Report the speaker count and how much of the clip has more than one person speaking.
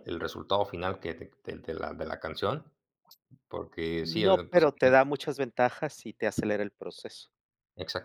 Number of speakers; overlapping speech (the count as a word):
two, about 9%